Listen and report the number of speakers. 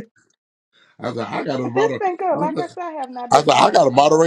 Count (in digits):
2